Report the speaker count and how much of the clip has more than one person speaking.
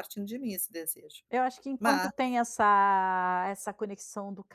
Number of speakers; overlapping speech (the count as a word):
two, about 7%